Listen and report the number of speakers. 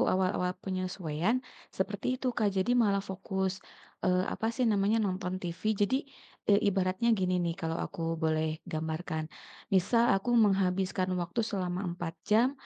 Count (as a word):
one